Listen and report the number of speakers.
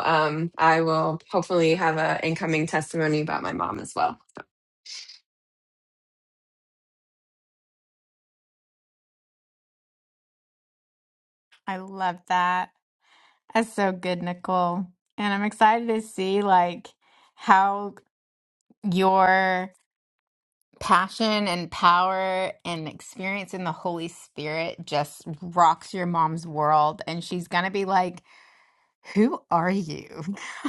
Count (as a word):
two